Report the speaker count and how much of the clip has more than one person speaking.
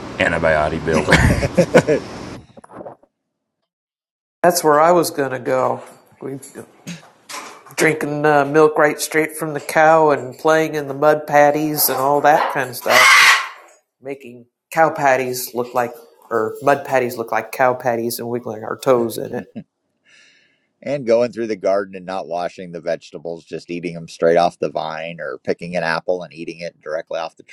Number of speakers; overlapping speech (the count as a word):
three, no overlap